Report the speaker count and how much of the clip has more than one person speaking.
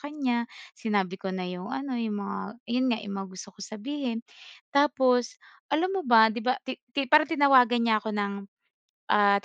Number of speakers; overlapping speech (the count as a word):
one, no overlap